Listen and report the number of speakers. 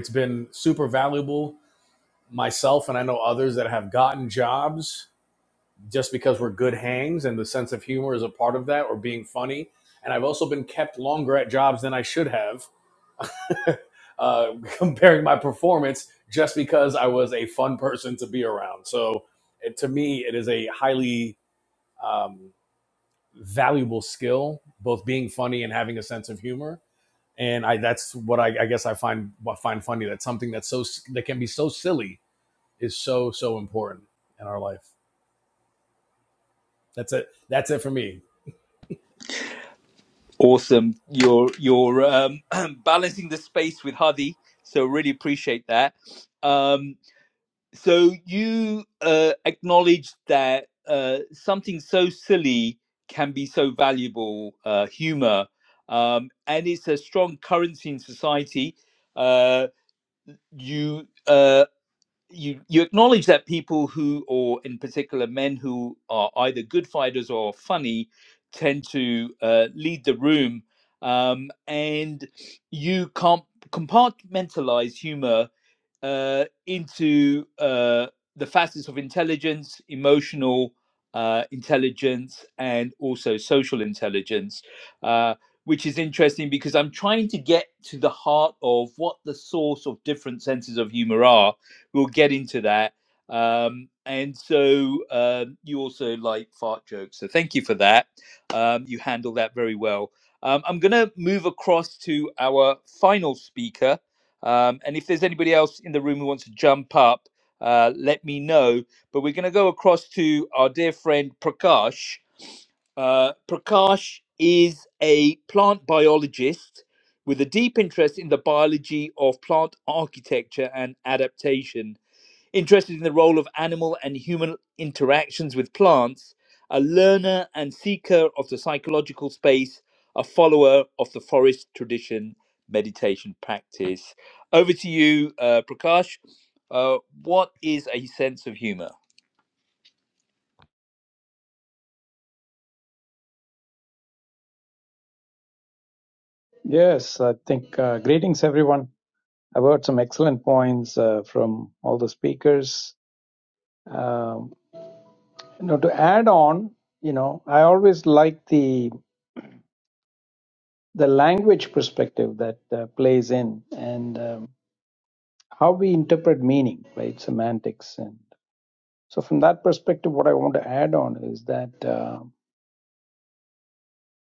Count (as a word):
three